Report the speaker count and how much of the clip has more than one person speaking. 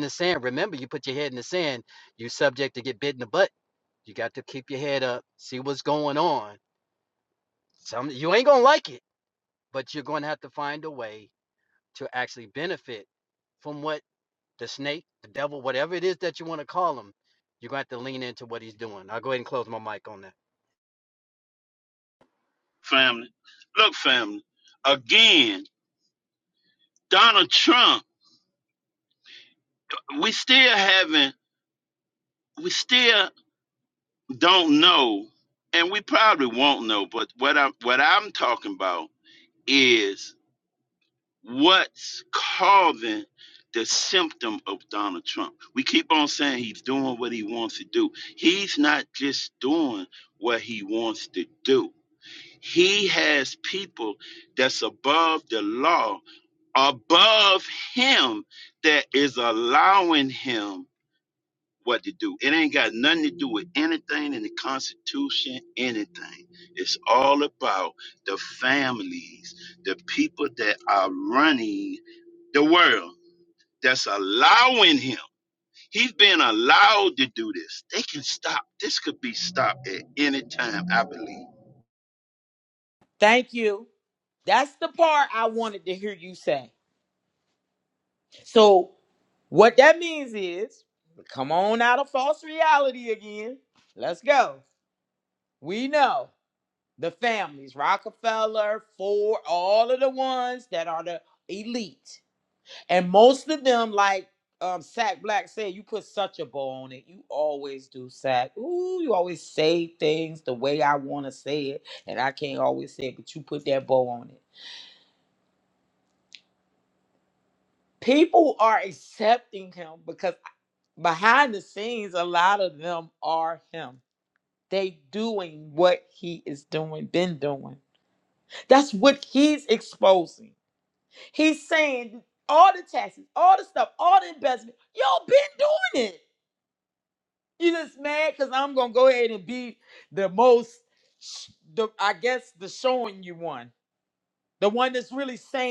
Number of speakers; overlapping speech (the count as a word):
three, no overlap